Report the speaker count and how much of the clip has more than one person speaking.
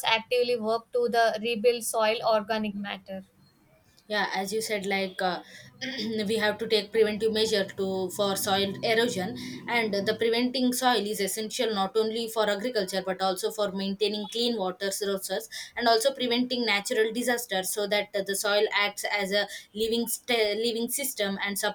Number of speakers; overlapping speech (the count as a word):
two, no overlap